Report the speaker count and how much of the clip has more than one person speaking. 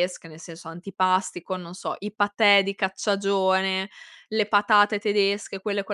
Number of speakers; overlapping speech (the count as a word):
one, no overlap